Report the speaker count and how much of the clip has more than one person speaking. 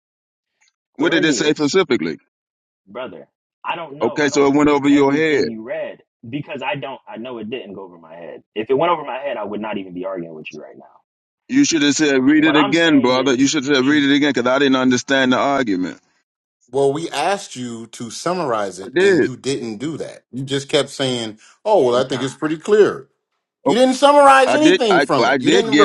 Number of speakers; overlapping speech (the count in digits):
3, about 23%